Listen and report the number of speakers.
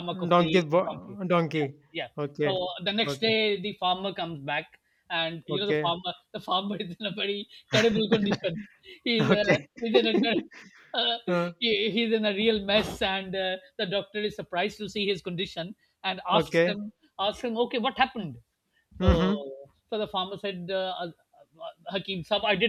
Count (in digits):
2